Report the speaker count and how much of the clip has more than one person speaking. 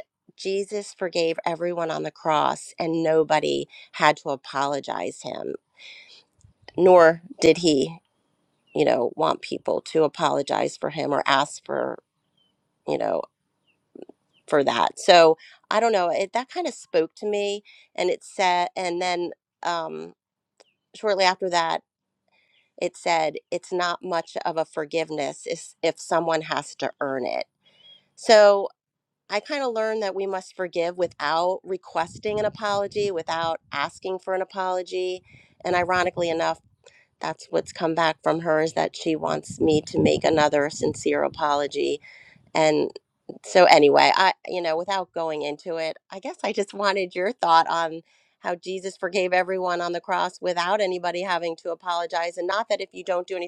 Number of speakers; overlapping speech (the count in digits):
1, no overlap